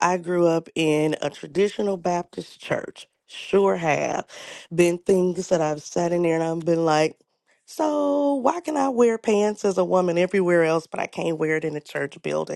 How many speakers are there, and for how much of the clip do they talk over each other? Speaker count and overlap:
1, no overlap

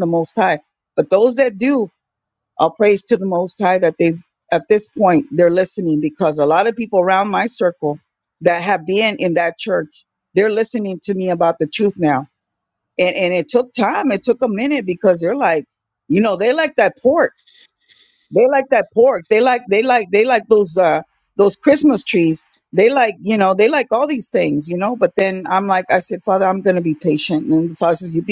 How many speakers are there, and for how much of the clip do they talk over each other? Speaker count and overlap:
1, no overlap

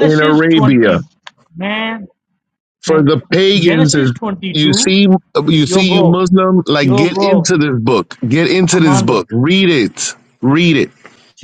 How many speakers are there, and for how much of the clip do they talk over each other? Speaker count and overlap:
2, about 34%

